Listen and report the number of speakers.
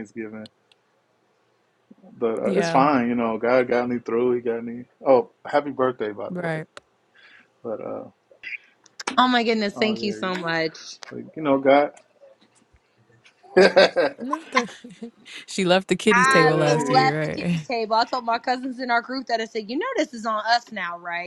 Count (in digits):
3